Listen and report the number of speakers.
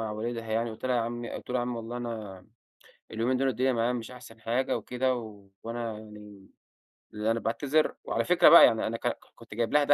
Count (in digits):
1